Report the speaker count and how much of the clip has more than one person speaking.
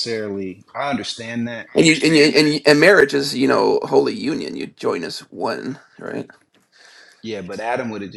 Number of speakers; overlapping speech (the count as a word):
two, no overlap